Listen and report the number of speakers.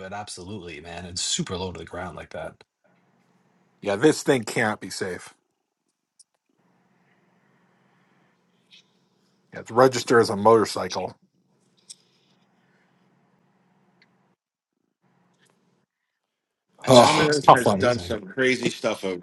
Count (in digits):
3